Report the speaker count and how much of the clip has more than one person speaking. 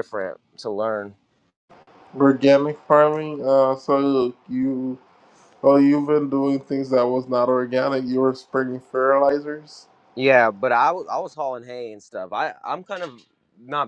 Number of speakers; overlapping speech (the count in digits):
2, no overlap